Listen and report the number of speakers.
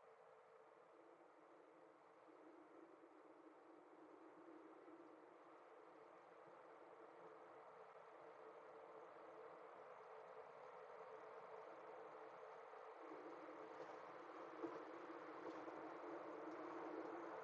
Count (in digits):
0